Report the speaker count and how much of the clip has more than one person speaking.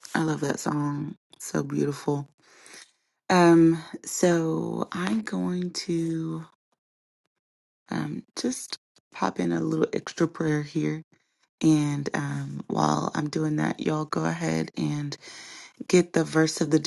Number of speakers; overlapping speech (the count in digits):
1, no overlap